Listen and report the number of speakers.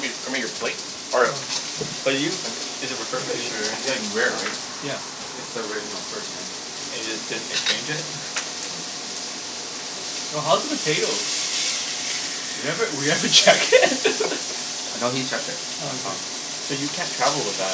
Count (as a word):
four